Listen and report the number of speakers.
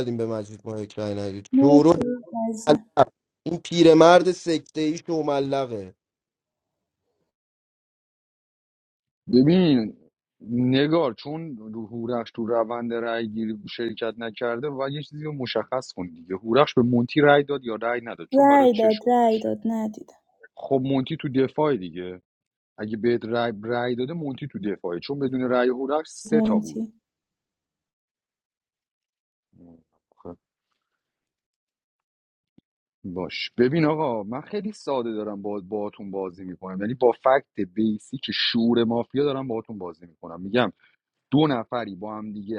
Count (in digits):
3